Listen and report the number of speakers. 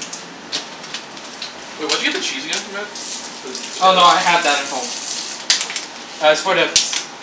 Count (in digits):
2